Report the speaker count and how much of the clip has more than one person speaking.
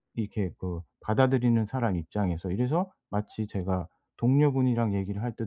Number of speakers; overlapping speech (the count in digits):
1, no overlap